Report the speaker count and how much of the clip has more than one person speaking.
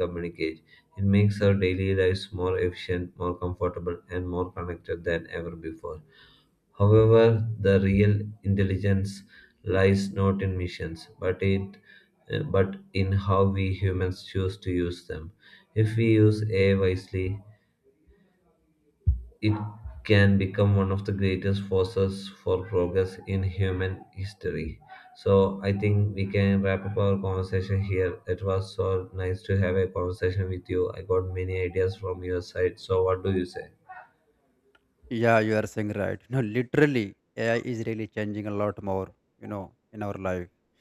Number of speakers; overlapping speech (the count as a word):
two, no overlap